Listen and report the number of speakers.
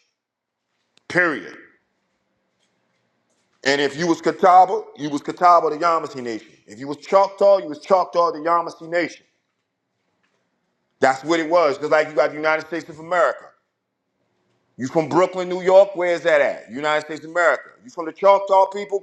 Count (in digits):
1